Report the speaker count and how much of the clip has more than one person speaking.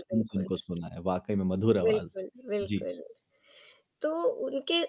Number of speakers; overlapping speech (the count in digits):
2, about 20%